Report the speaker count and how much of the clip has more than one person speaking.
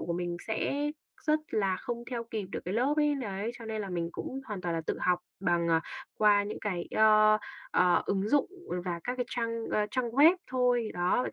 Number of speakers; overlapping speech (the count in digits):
1, no overlap